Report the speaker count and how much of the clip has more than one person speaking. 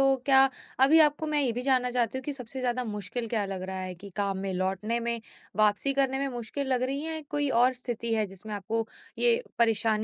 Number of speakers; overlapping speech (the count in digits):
1, no overlap